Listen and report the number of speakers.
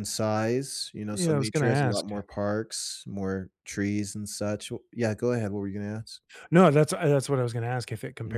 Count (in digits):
2